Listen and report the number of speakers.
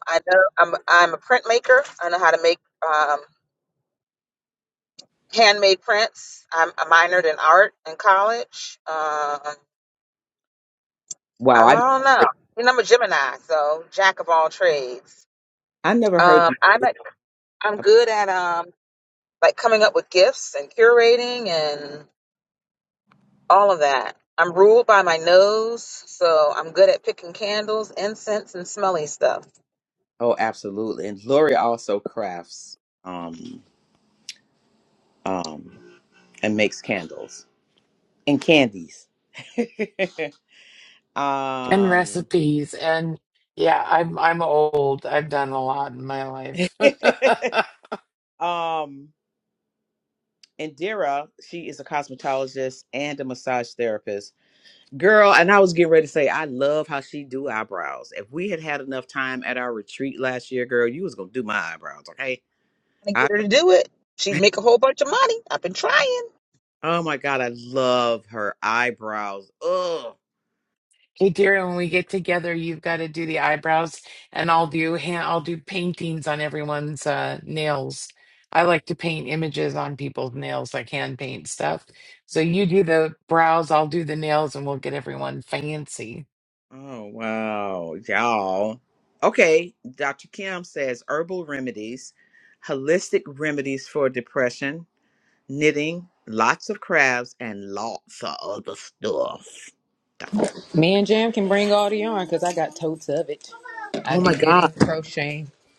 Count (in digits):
4